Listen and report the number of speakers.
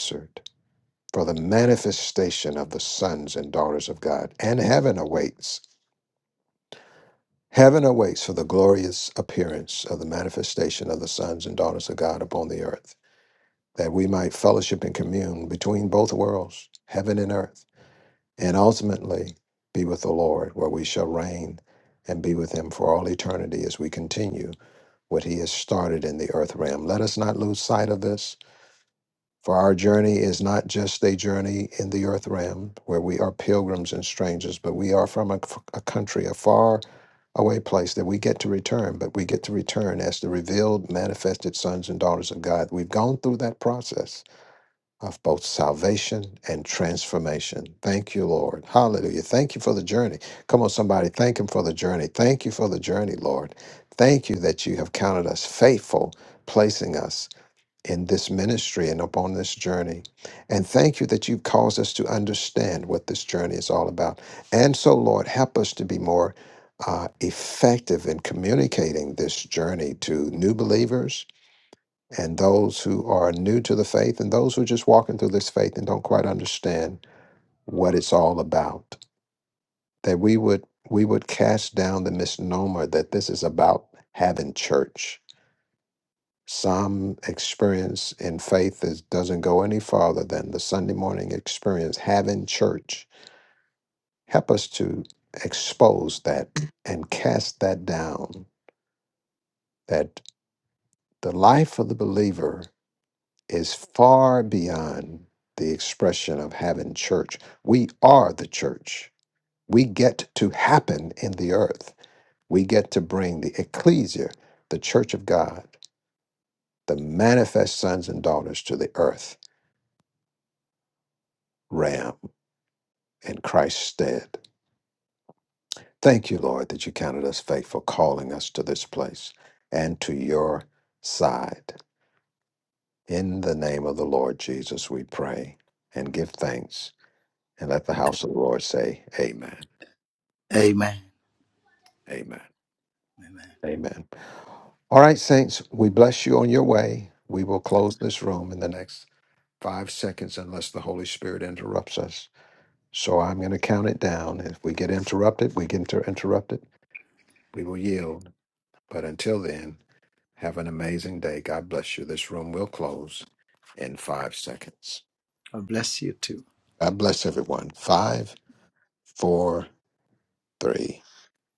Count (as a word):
two